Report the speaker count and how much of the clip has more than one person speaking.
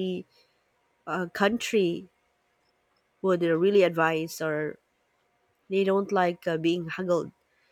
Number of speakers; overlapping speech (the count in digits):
1, no overlap